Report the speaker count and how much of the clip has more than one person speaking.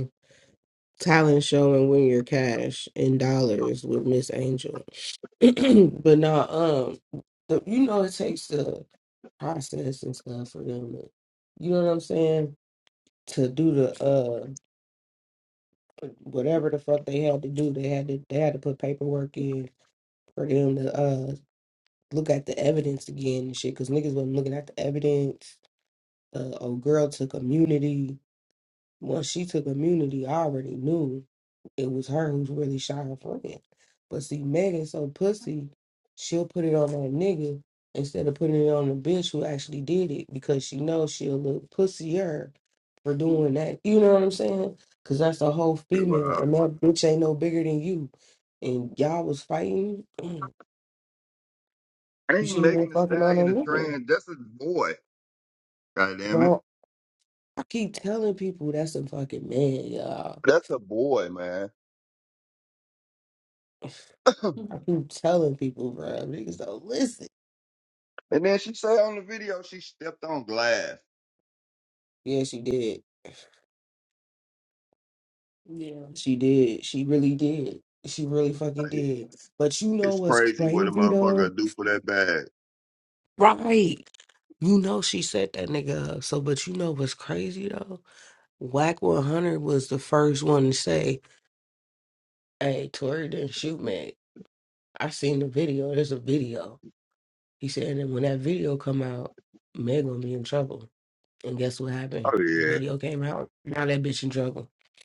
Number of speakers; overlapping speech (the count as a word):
two, about 4%